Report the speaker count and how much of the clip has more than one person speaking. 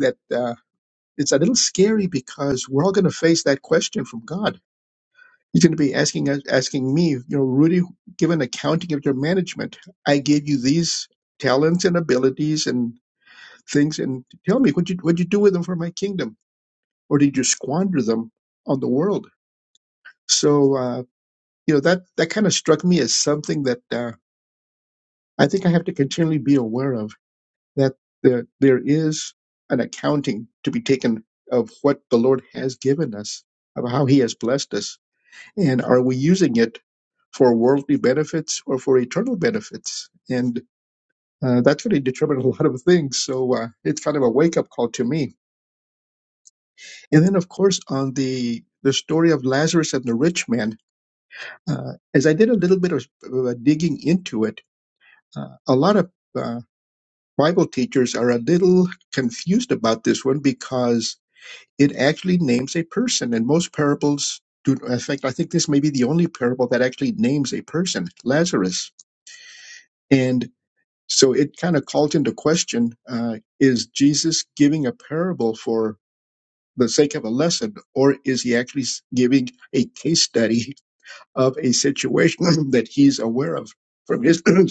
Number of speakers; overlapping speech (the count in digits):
1, no overlap